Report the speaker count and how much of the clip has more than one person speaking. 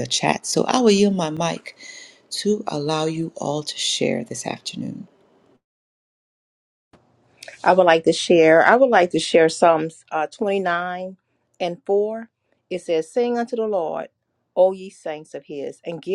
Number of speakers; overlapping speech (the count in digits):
2, no overlap